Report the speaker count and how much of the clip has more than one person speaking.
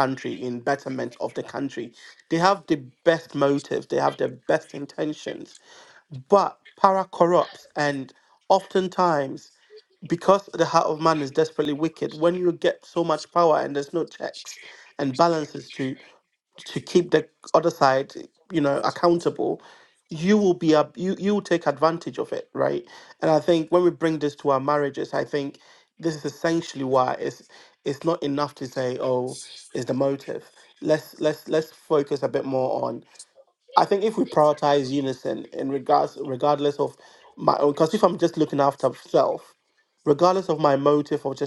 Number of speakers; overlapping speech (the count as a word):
one, no overlap